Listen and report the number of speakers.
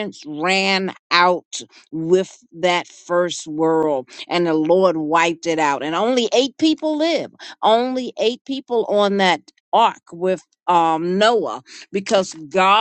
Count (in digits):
1